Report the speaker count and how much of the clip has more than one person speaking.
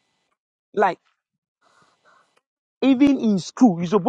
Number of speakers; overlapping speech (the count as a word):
one, no overlap